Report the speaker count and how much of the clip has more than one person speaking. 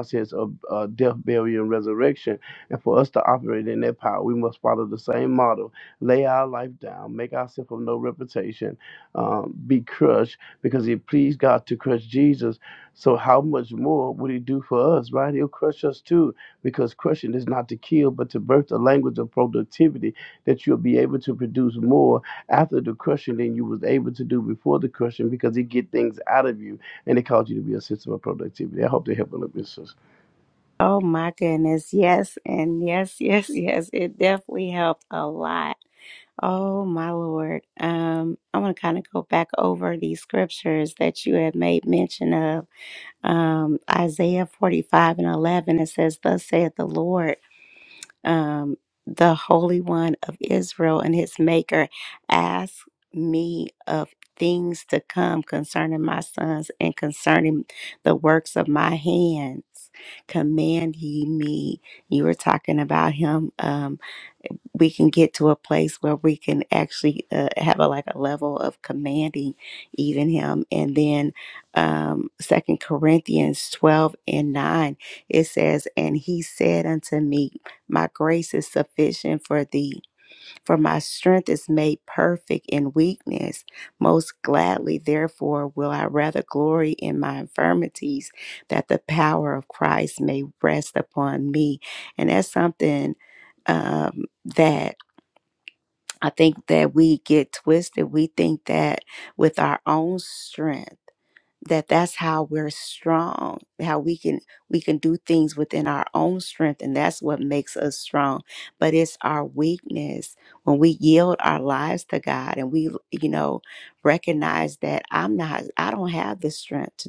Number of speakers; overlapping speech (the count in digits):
2, no overlap